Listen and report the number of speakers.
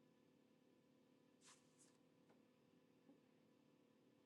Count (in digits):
0